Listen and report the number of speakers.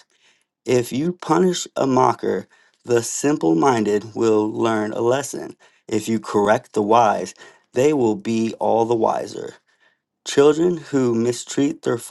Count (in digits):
1